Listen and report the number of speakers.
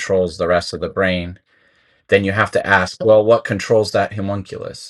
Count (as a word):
one